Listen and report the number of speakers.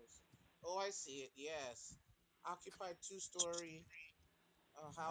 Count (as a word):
one